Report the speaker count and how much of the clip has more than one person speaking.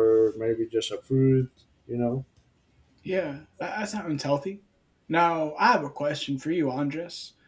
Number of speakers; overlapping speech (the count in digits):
2, no overlap